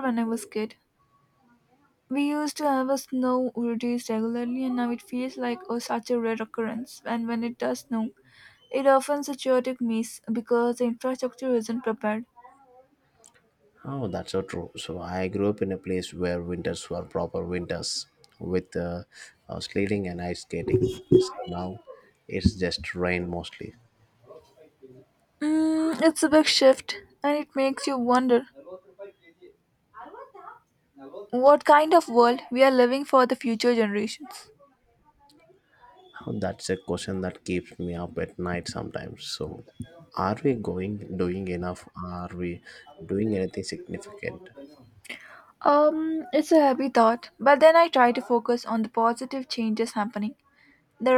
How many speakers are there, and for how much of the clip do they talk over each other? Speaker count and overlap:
2, no overlap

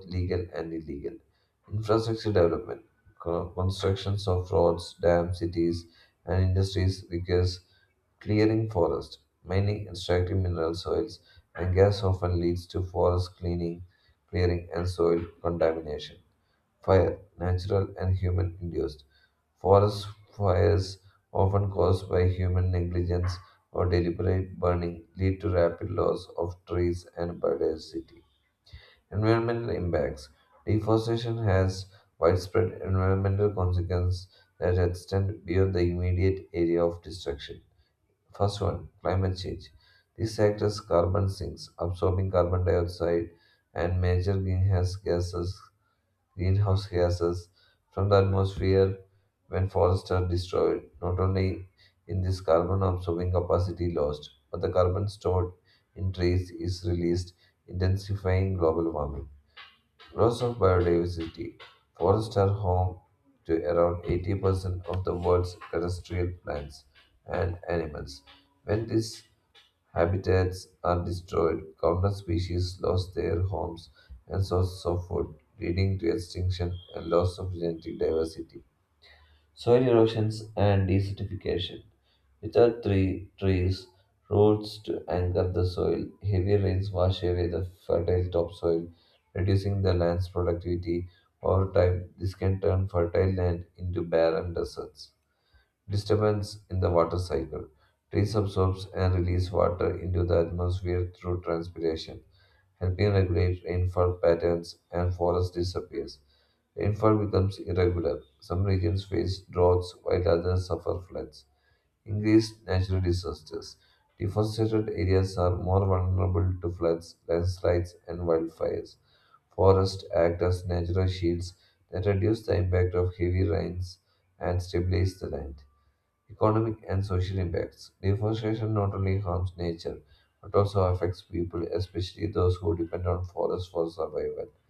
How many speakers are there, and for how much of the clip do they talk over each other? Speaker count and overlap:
1, no overlap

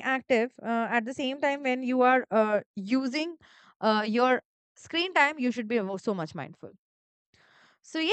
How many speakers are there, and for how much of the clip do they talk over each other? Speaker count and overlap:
1, no overlap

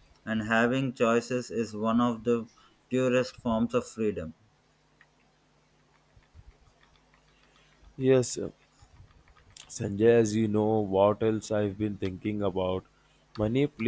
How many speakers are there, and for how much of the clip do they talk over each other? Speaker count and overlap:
2, no overlap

